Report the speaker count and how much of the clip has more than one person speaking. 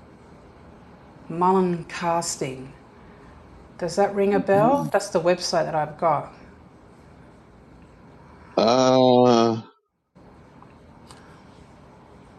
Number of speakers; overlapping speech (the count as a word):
two, no overlap